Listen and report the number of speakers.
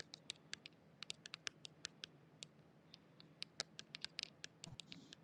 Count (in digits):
0